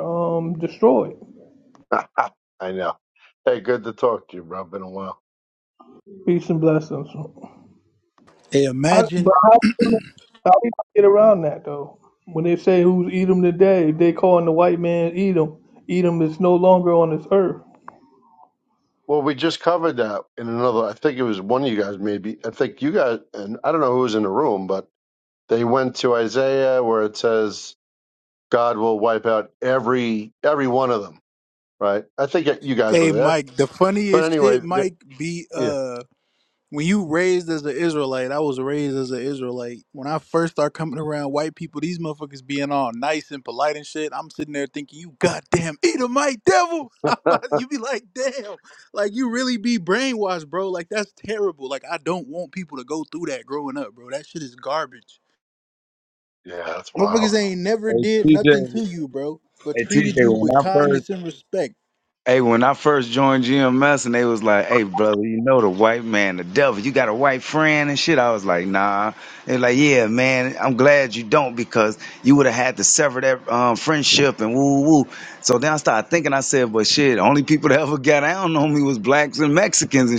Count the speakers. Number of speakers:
four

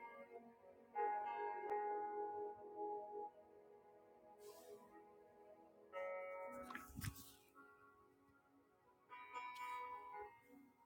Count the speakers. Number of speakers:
zero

